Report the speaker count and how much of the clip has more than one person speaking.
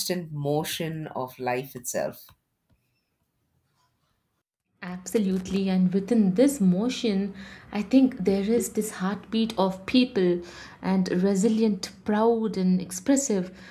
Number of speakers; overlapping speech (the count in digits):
2, no overlap